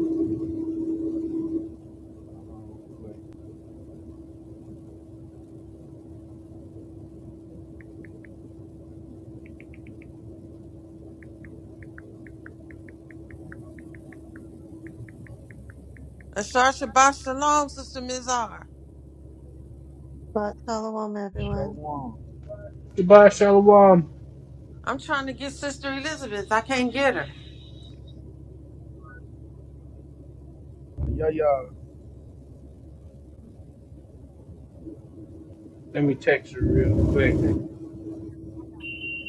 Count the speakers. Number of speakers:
four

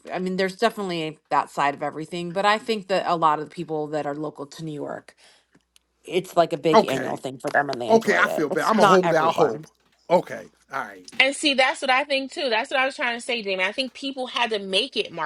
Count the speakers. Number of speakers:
three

